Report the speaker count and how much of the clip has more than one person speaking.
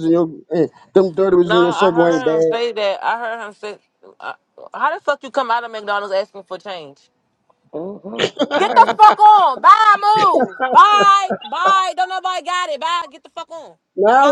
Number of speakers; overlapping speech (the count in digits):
3, about 11%